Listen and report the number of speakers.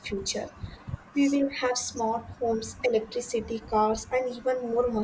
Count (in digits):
1